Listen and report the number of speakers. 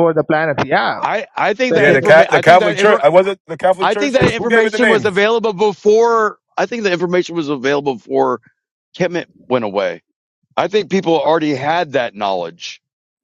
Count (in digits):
3